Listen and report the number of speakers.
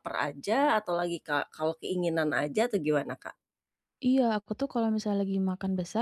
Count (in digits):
2